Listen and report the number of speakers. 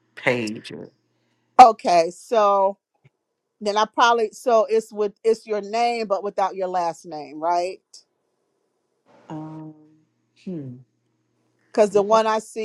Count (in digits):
2